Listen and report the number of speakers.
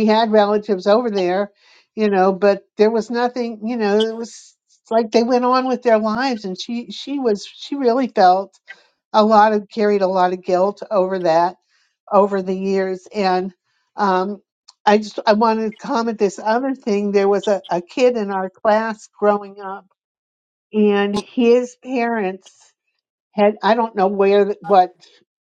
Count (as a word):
one